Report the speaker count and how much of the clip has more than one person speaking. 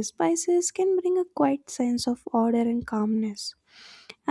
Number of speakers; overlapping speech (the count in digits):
1, no overlap